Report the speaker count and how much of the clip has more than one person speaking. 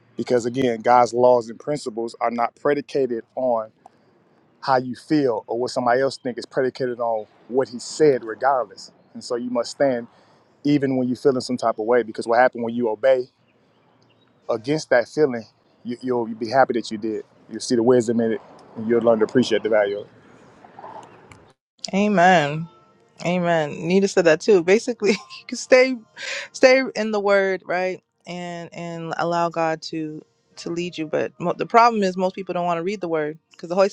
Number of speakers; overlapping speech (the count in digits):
2, no overlap